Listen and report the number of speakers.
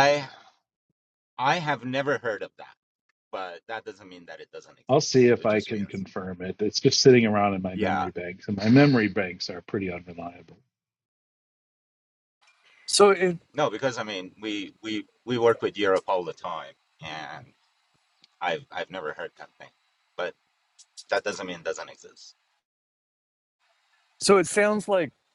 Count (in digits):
3